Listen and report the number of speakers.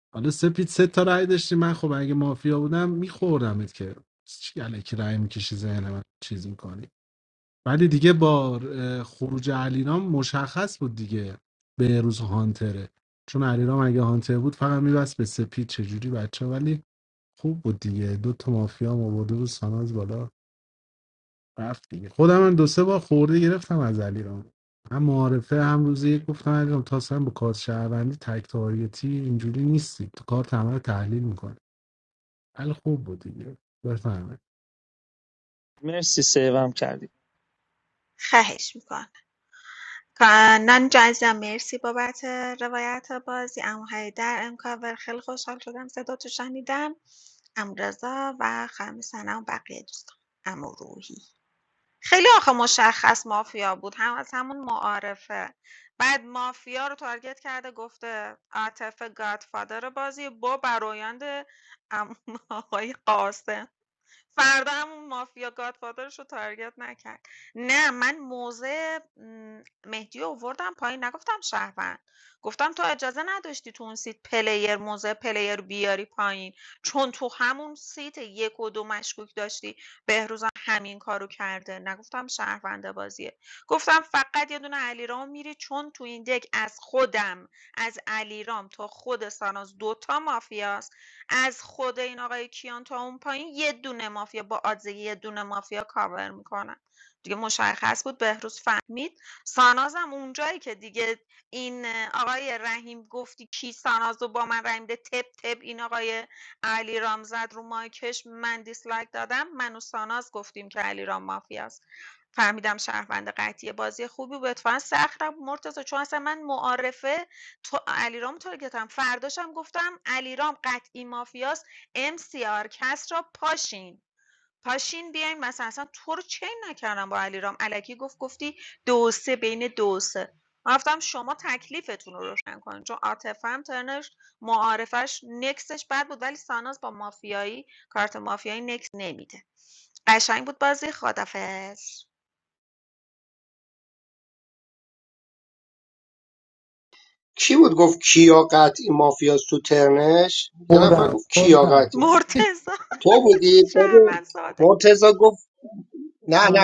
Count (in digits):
4